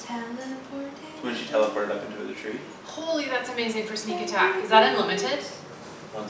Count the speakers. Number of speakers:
3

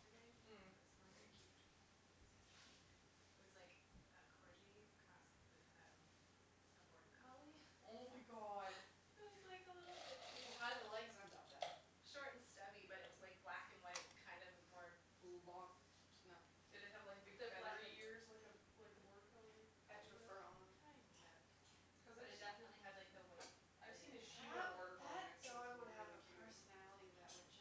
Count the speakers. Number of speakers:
3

